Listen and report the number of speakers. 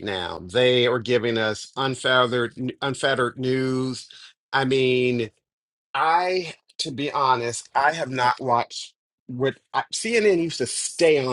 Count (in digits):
1